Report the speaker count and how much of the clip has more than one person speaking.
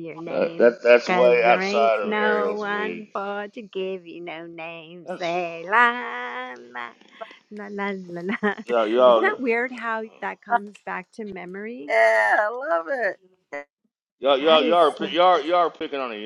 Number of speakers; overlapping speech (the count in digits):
3, about 26%